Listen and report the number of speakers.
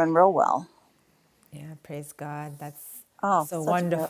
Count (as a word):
two